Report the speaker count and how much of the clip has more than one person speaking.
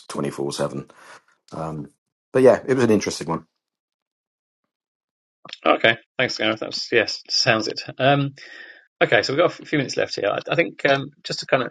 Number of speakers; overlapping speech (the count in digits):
2, no overlap